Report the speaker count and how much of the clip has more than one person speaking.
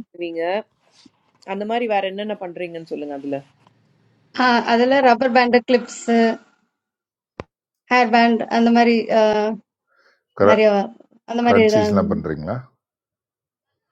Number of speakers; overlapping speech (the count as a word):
three, about 5%